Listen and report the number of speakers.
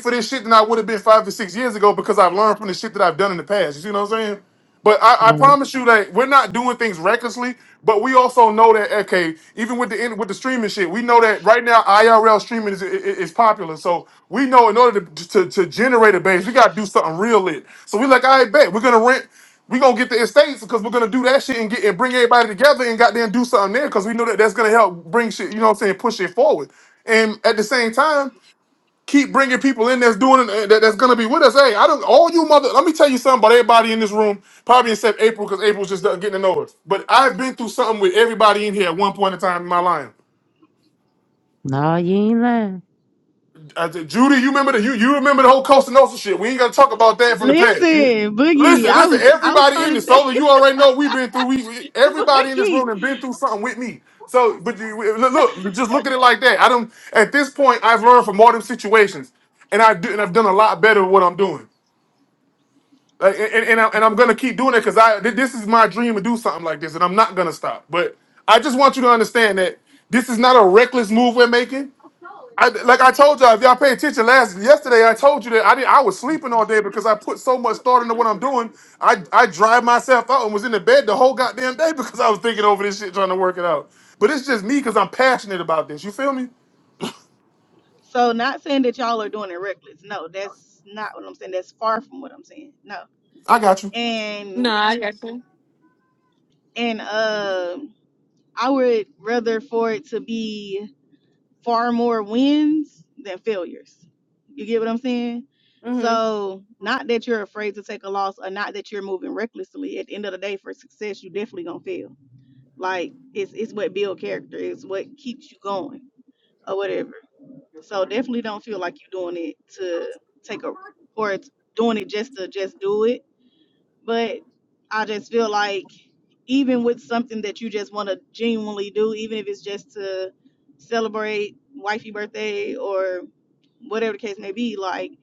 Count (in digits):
4